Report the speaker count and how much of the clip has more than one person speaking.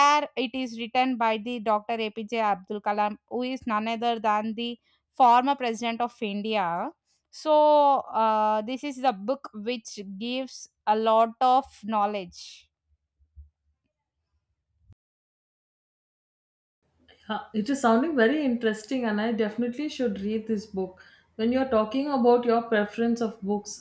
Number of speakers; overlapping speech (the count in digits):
2, no overlap